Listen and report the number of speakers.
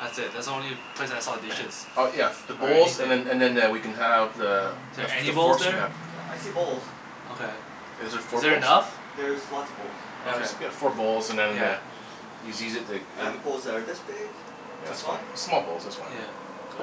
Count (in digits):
3